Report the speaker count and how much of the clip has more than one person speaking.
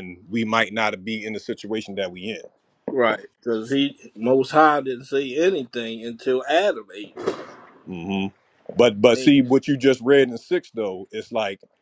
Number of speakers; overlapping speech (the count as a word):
two, about 1%